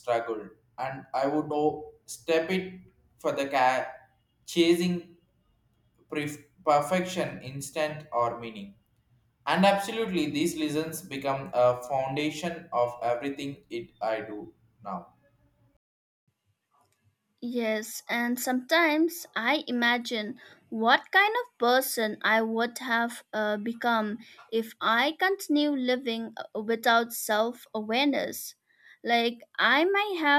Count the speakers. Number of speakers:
2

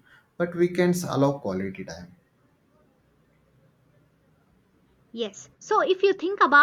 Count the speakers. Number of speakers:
2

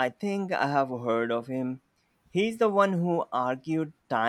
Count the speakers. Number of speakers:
1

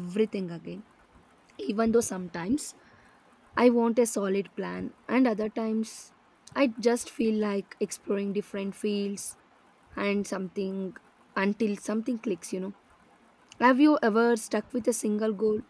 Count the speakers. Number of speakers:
1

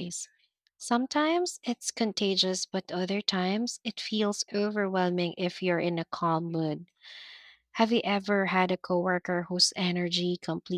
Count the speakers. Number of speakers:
1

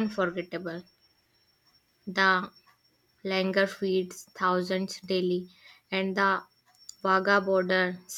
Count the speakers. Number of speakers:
1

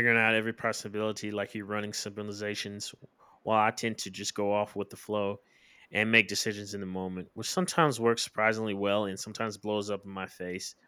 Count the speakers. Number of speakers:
1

